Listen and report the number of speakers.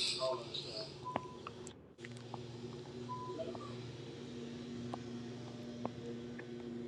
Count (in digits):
0